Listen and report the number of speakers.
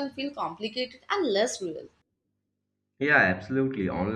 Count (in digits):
2